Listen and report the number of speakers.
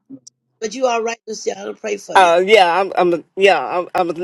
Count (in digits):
2